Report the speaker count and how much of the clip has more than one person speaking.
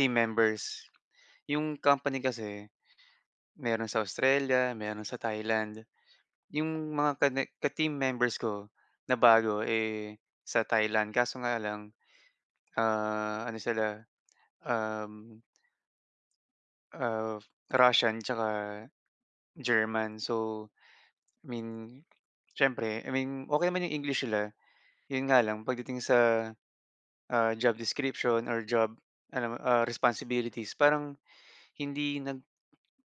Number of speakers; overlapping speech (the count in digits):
1, no overlap